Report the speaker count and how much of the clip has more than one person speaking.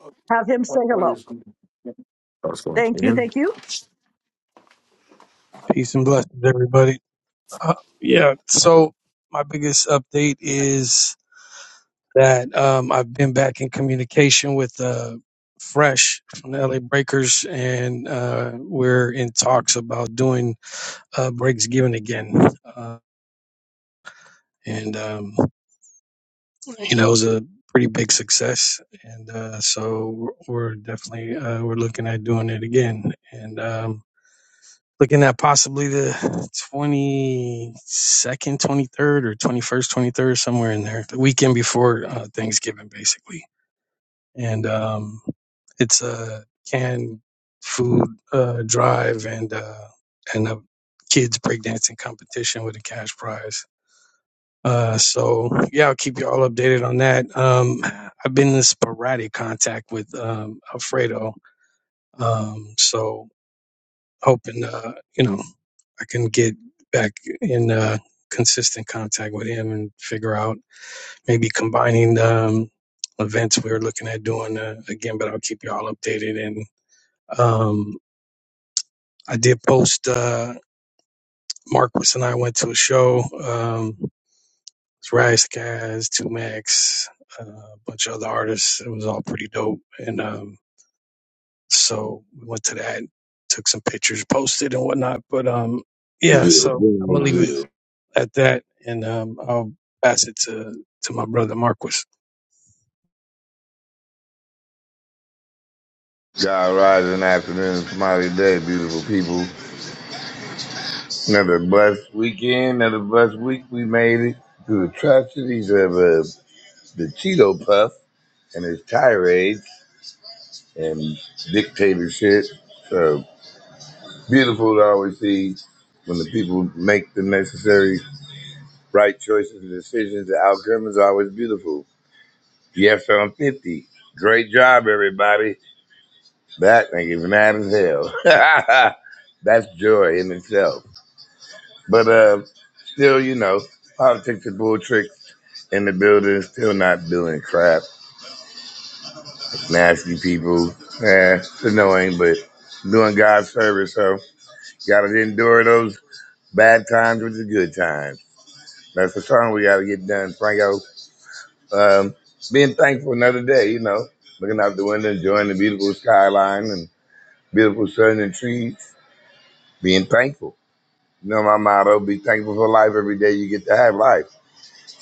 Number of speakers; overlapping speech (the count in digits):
4, about 1%